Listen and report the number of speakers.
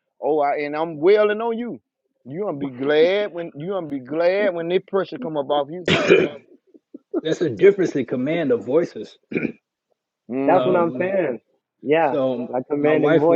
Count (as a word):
three